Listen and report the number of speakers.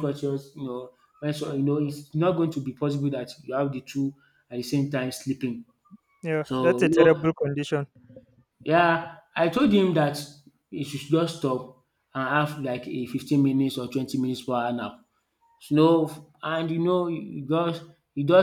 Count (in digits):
2